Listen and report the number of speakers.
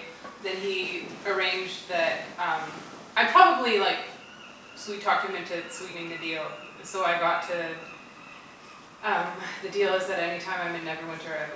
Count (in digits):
1